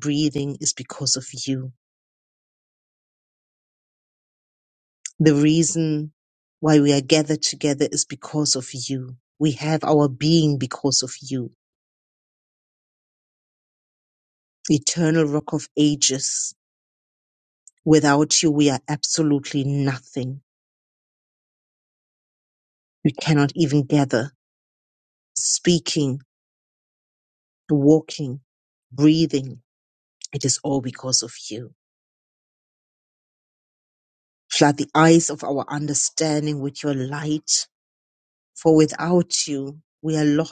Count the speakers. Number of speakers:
1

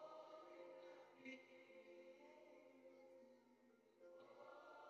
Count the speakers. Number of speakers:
0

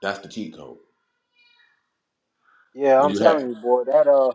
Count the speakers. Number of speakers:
2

